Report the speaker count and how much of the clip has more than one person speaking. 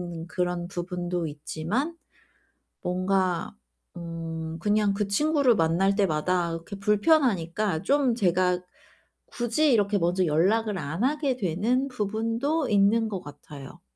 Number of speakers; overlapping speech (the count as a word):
one, no overlap